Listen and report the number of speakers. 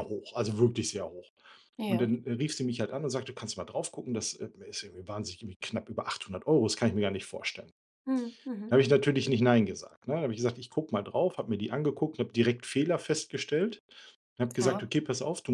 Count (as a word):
two